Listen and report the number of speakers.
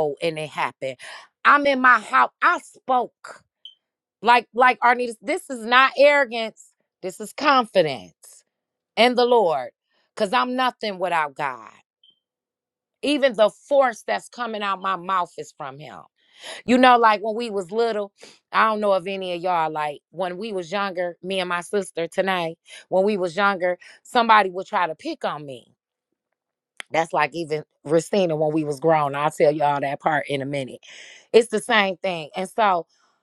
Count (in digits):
1